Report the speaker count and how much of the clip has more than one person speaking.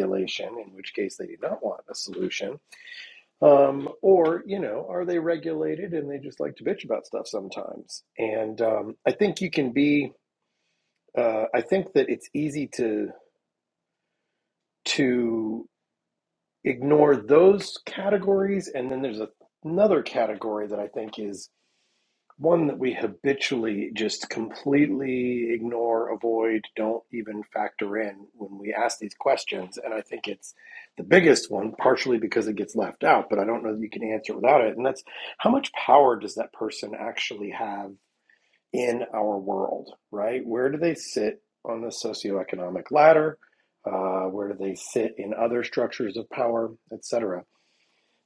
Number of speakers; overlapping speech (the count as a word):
one, no overlap